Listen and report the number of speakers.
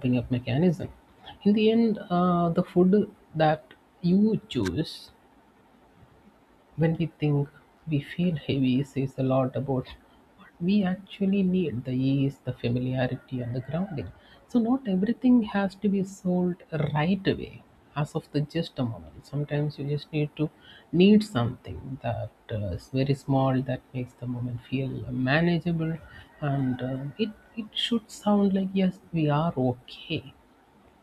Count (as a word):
one